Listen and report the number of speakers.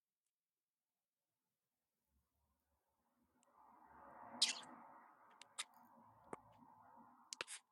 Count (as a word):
zero